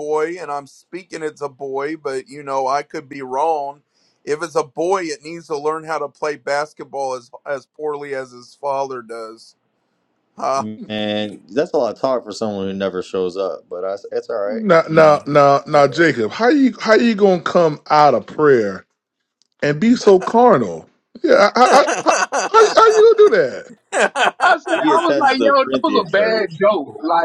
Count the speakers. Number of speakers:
4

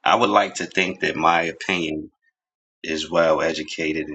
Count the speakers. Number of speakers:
1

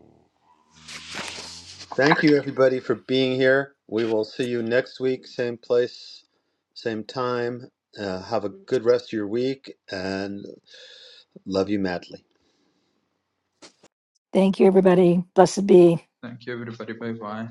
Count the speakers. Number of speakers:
3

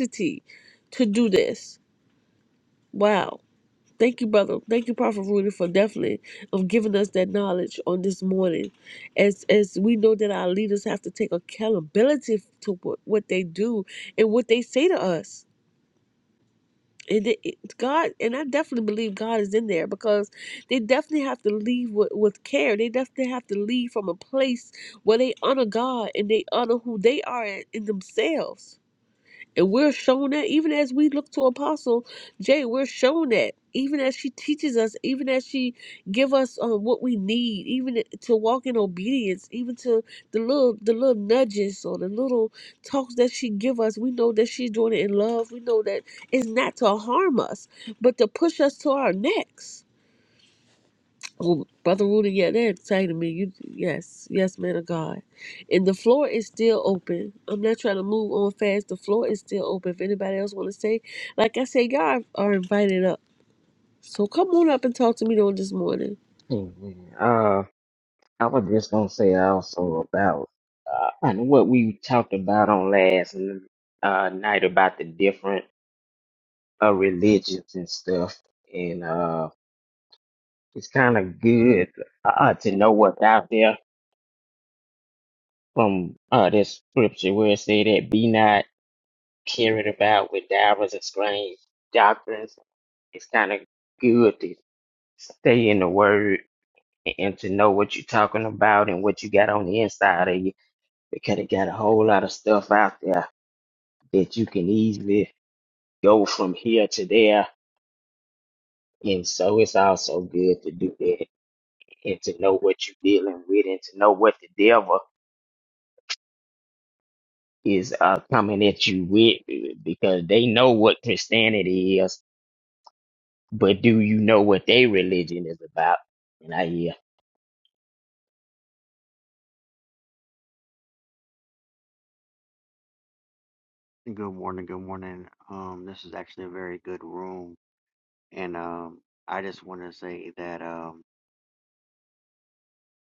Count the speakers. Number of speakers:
3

